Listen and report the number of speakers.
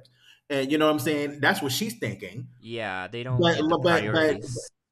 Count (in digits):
2